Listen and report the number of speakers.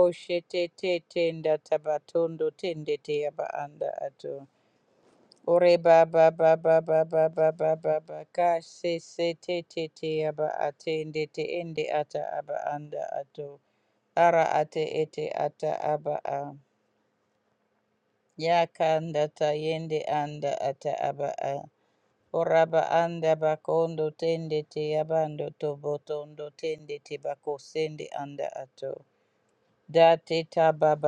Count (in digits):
1